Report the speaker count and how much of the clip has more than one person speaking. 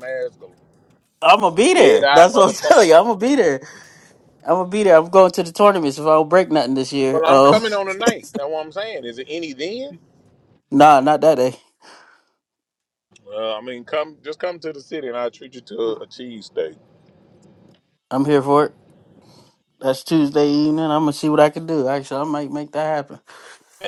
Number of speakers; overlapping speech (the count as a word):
two, about 6%